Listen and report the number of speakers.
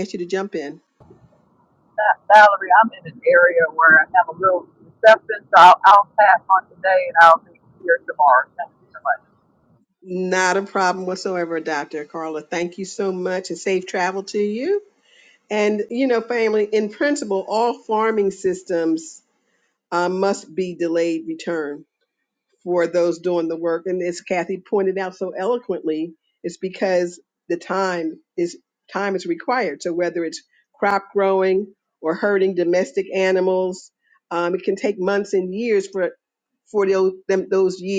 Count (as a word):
two